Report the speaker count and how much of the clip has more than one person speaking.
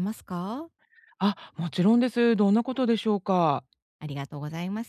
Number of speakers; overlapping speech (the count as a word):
two, no overlap